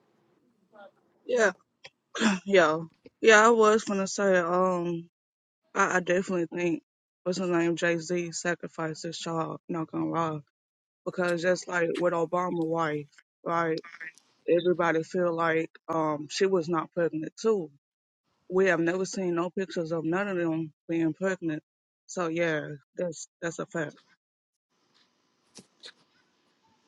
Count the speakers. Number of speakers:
1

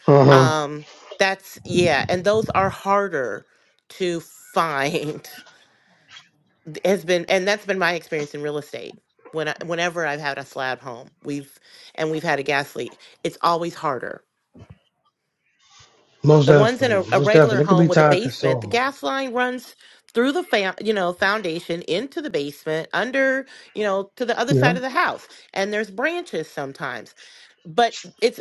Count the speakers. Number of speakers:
2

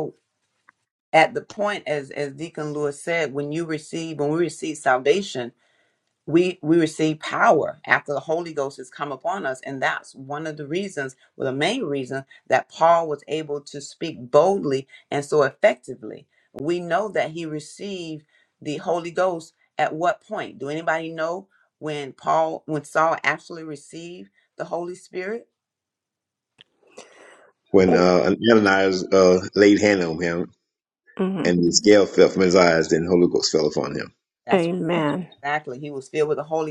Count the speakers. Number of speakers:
3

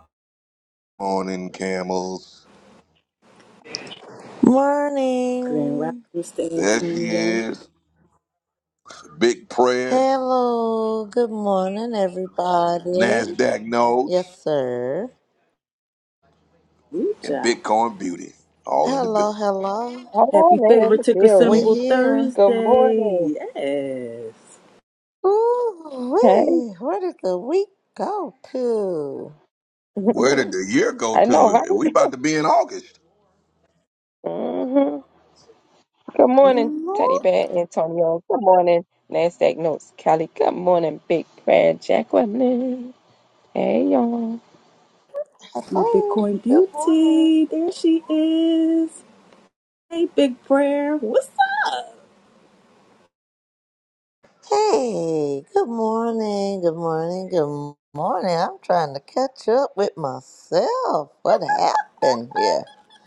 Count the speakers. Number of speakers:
4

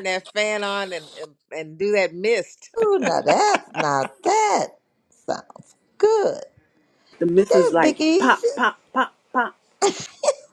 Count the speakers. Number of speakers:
3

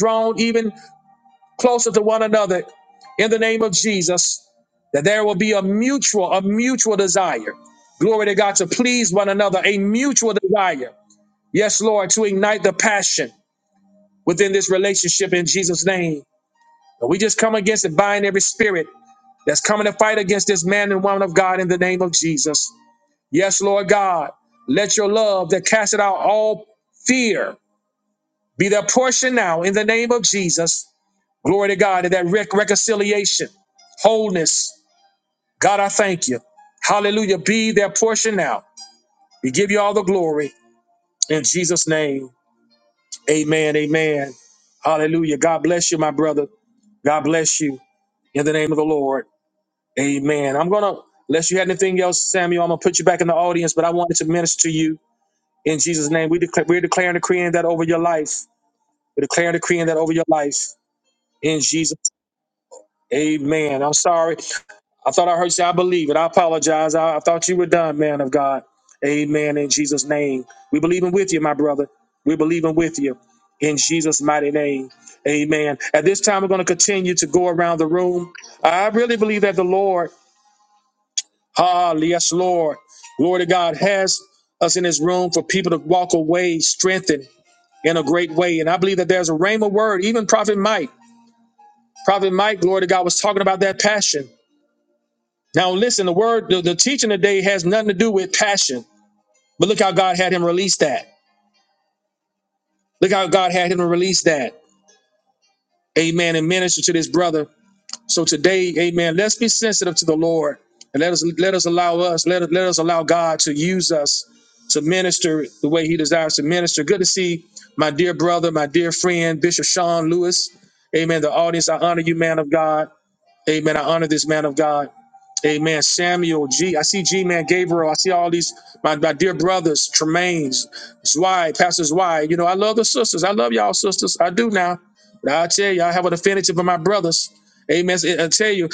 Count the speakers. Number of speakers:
1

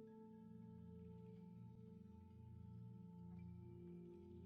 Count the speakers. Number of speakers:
0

